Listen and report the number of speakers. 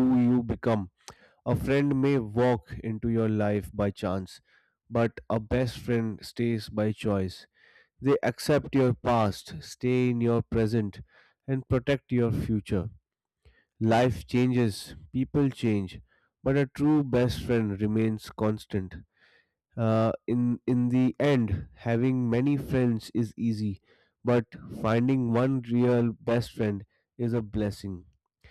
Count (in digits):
1